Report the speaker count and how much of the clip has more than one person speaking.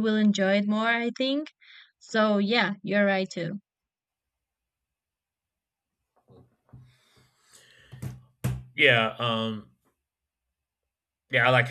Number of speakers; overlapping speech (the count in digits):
2, no overlap